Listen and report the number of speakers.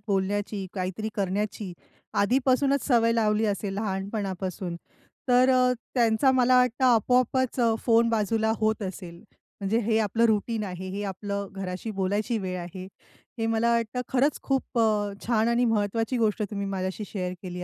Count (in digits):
1